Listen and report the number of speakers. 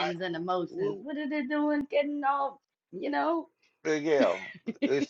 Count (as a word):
two